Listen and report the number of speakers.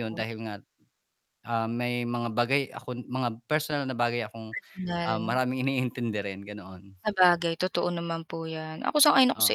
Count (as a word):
two